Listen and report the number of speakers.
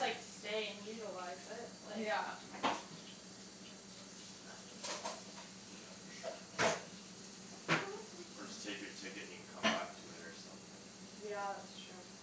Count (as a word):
three